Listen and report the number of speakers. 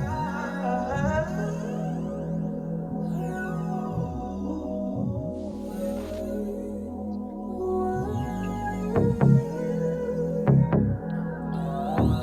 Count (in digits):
0